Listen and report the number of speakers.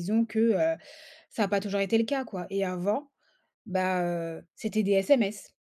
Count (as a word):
one